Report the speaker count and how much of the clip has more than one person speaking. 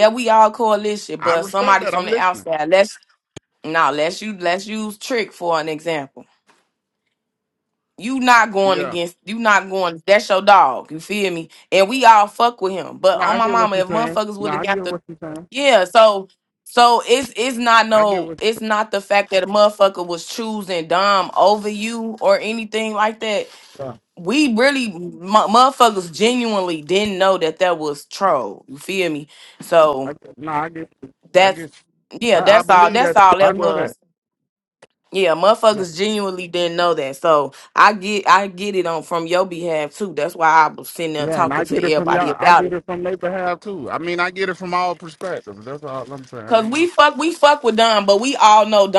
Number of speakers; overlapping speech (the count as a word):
two, about 16%